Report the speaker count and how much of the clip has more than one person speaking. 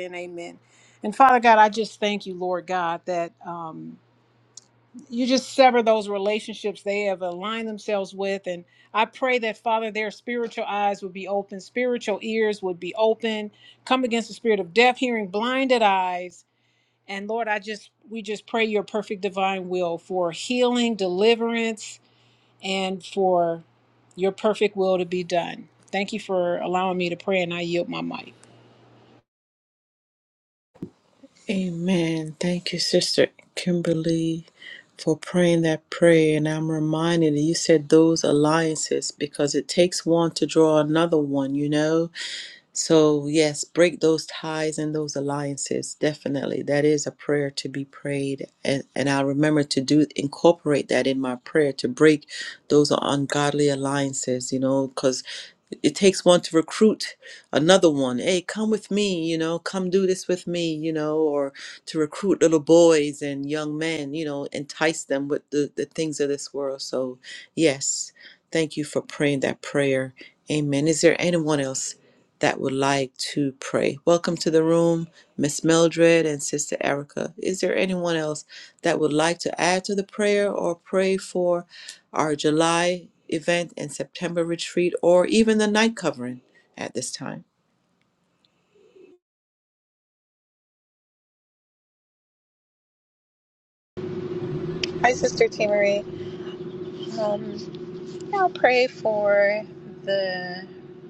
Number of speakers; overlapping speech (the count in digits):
3, no overlap